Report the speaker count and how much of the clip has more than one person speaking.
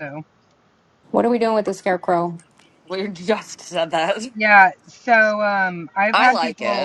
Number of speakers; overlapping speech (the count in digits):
3, about 11%